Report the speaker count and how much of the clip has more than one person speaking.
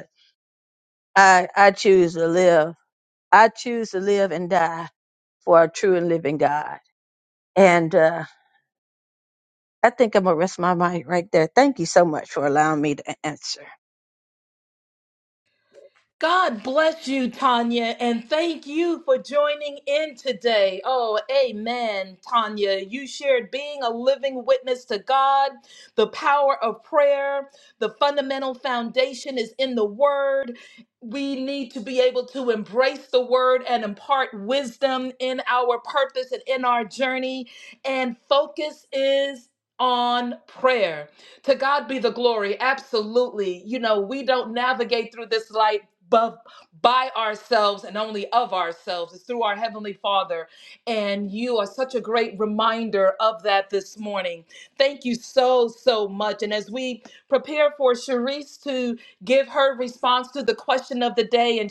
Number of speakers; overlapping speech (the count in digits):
2, no overlap